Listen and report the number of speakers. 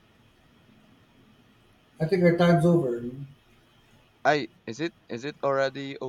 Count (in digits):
2